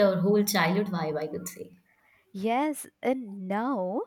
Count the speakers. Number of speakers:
2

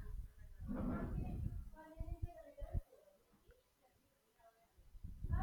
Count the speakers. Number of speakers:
0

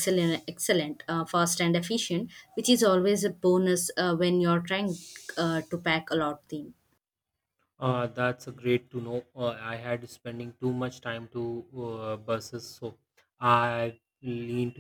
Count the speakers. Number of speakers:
2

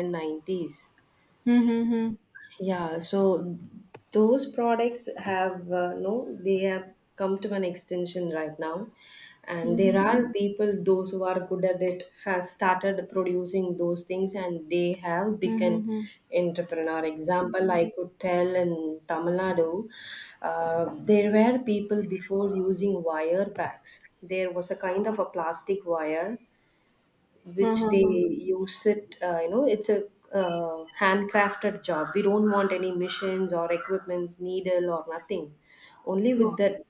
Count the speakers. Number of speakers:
2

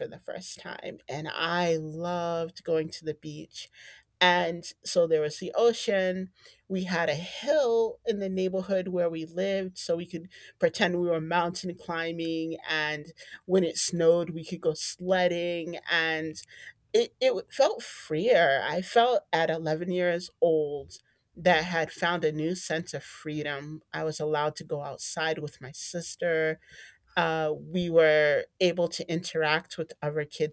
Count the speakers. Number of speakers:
1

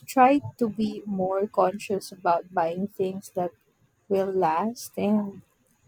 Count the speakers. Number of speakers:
1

